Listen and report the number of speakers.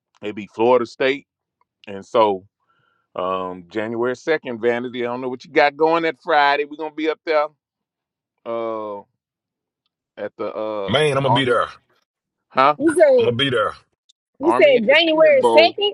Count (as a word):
three